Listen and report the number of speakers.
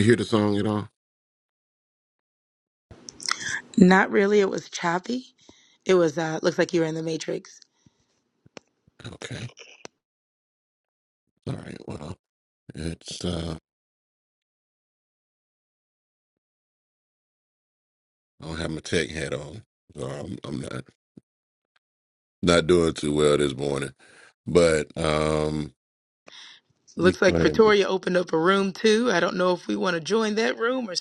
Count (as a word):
two